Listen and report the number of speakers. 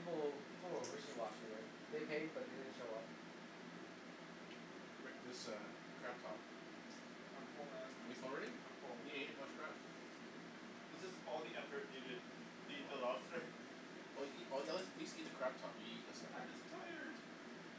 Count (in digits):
3